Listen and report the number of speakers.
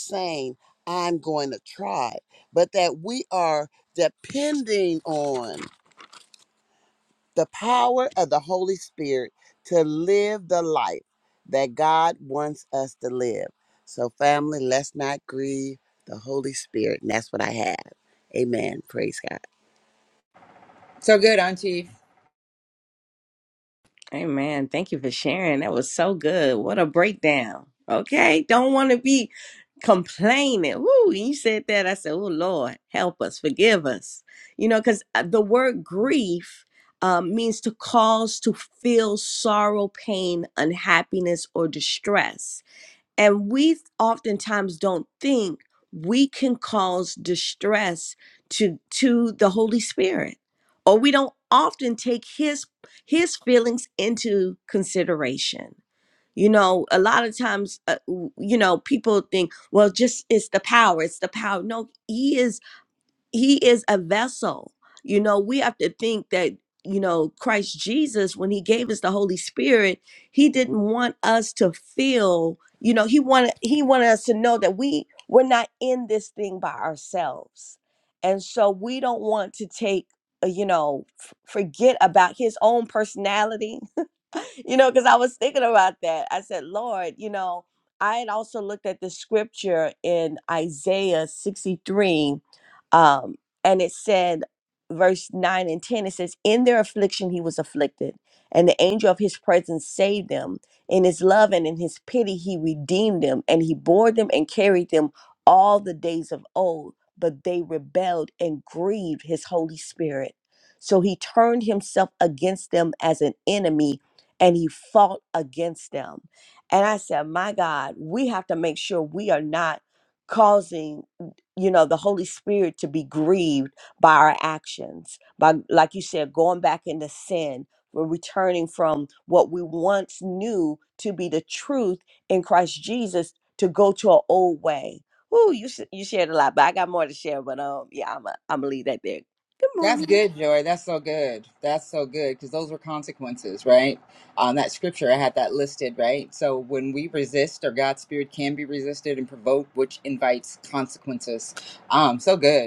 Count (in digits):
3